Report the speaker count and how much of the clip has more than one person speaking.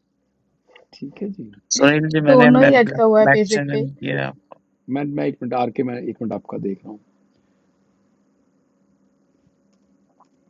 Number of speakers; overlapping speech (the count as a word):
three, about 11%